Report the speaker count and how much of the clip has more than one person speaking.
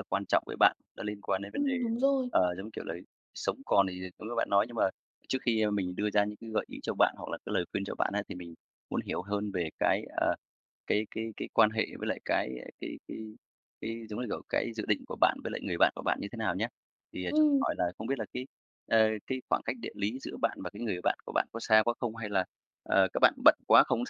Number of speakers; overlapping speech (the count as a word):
two, about 2%